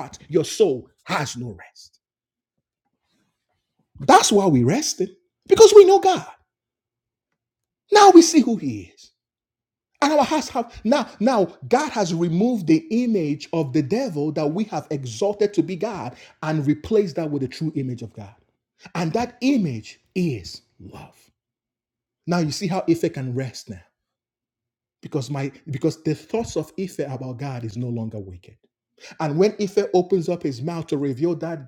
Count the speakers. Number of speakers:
1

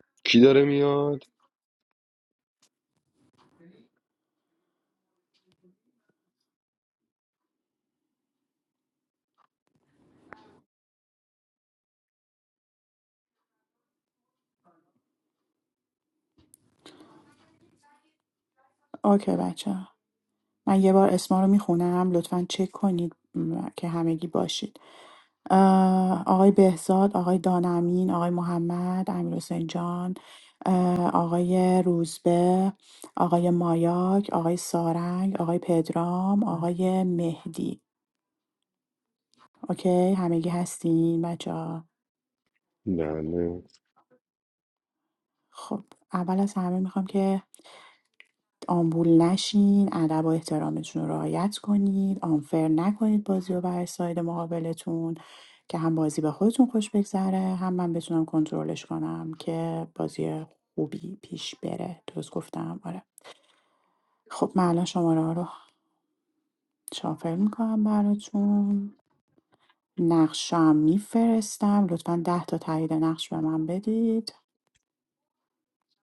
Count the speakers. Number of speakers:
2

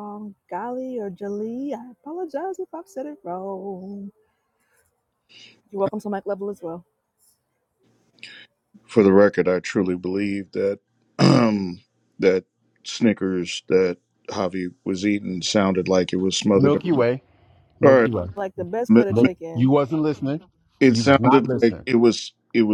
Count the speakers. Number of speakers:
3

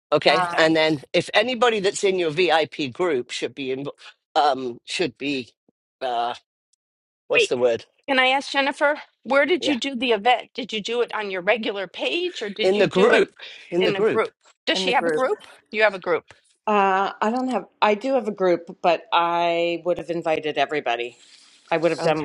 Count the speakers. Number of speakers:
3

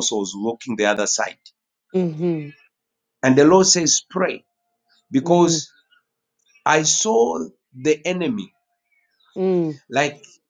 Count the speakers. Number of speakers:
2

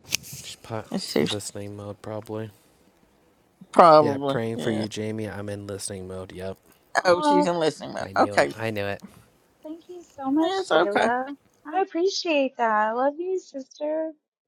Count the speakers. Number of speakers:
3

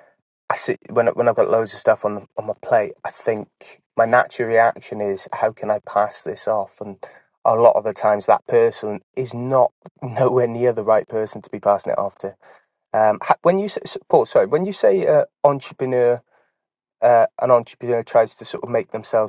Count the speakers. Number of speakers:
1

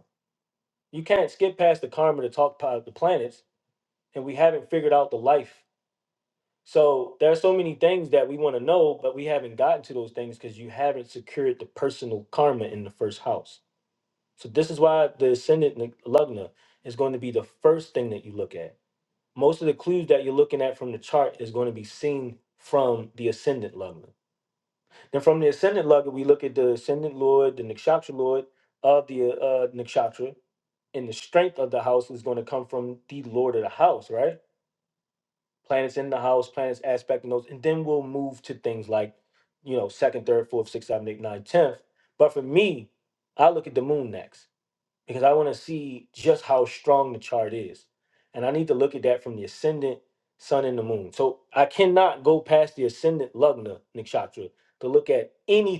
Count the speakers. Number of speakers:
1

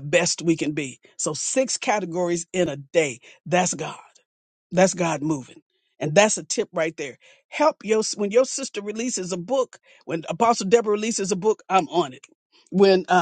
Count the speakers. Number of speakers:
1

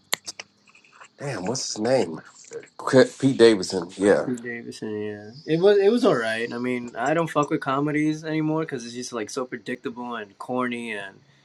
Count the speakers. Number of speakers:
2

